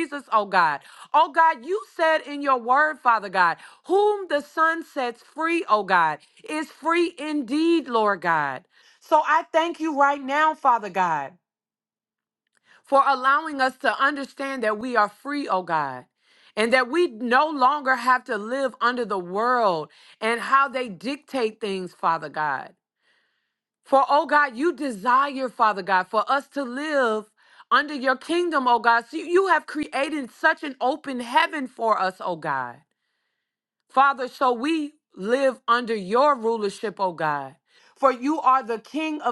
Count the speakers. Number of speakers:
1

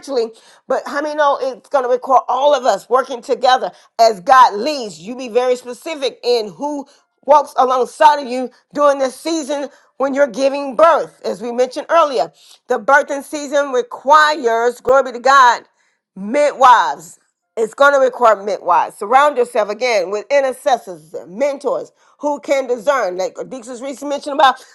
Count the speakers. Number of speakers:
1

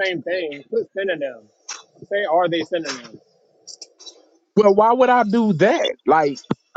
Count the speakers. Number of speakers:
2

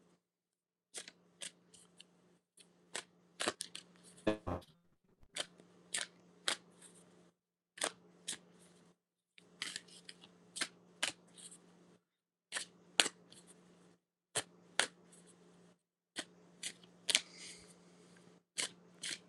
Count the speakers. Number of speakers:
0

